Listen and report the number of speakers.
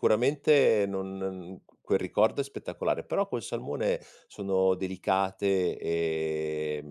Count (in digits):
1